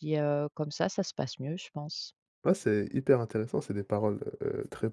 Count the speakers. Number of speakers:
two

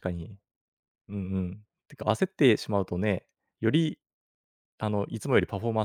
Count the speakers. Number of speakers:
one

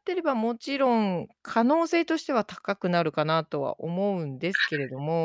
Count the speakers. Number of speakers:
one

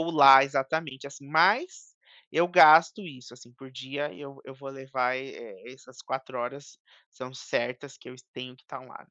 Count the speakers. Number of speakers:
one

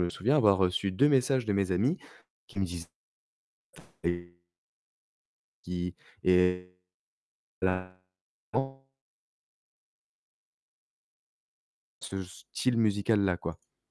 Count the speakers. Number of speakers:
one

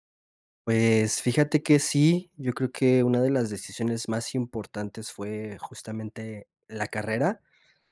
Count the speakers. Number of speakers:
one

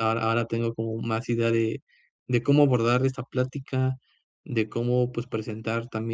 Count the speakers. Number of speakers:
one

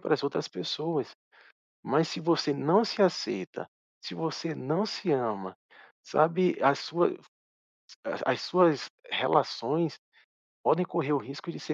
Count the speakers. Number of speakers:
one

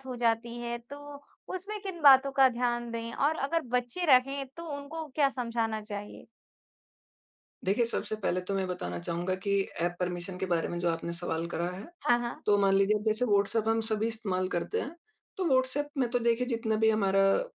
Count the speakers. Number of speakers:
two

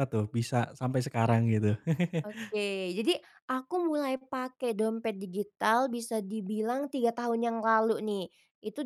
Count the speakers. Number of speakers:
two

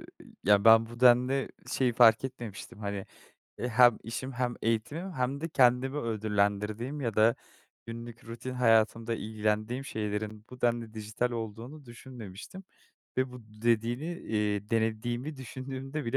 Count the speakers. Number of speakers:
one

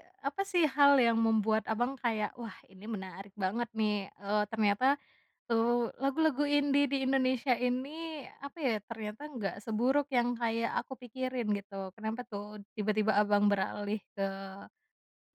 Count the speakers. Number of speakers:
one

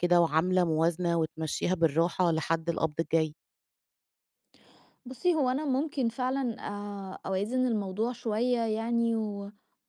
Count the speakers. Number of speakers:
two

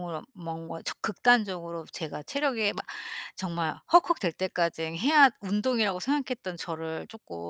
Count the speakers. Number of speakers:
one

